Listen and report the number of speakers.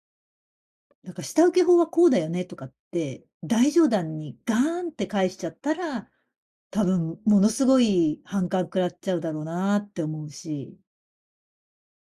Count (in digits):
1